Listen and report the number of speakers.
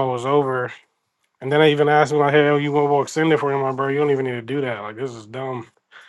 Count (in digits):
1